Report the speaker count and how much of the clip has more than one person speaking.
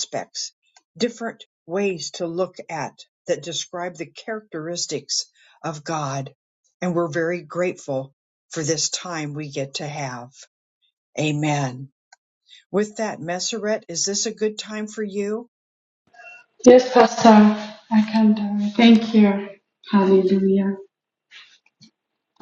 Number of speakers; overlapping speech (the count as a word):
two, no overlap